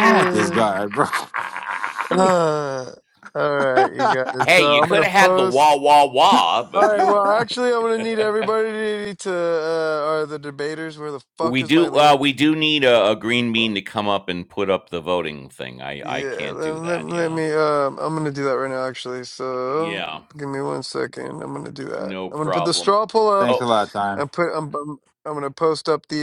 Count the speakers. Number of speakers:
3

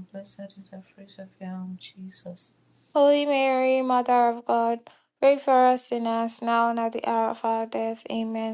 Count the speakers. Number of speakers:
2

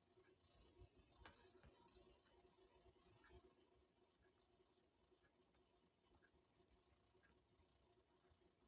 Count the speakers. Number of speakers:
0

